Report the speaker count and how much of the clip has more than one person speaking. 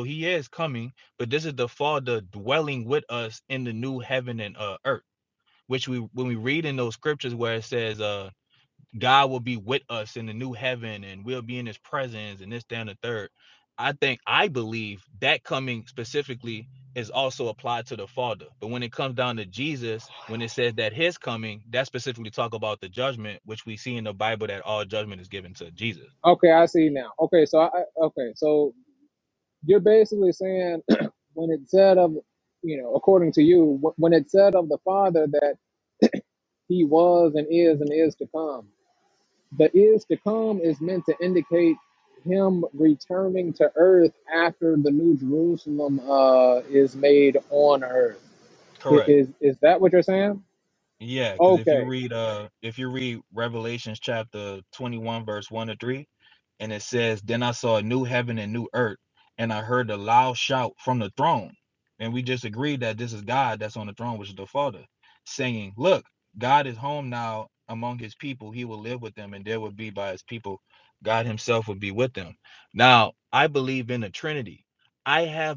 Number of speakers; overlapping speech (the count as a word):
two, about 1%